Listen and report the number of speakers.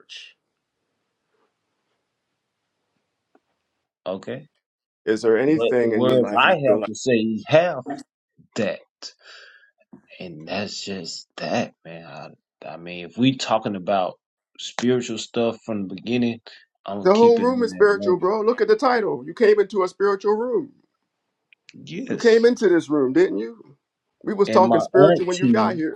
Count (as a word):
two